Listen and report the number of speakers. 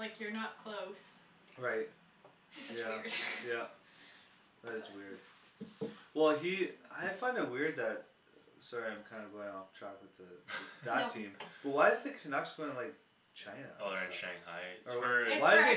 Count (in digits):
3